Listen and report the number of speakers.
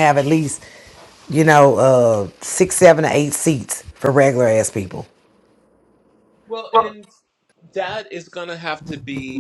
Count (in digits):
2